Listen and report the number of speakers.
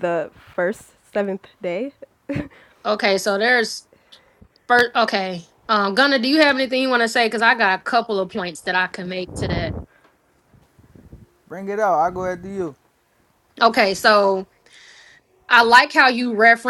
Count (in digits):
3